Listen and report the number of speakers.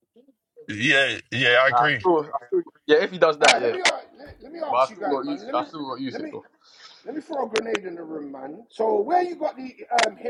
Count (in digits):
3